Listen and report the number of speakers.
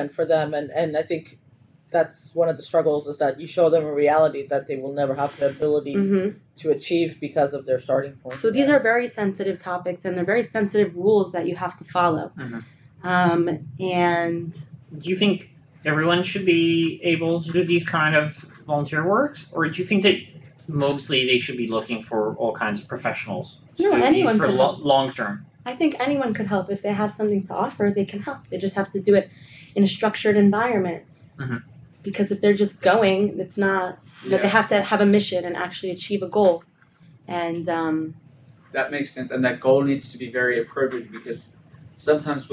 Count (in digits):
4